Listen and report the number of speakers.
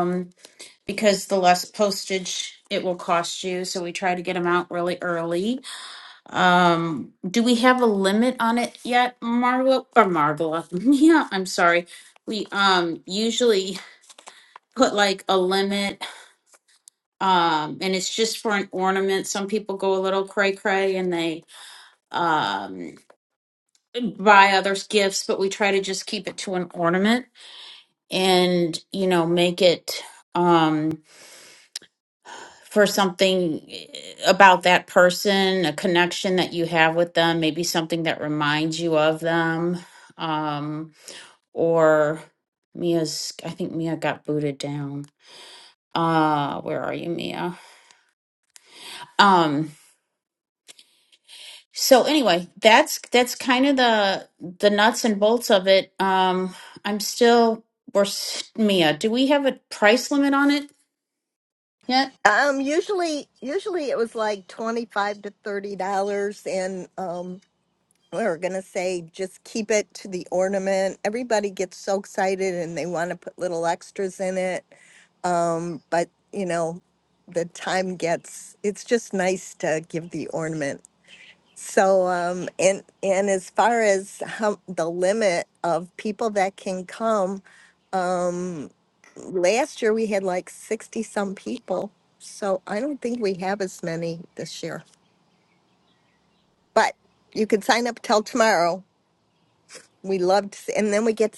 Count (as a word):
two